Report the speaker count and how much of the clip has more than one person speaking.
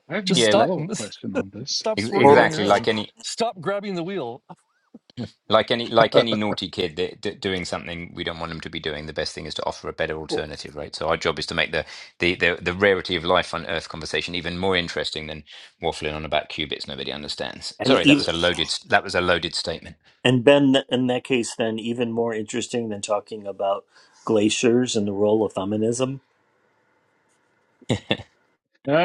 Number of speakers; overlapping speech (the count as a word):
four, about 7%